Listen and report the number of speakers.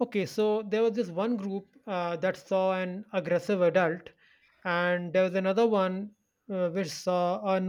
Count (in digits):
1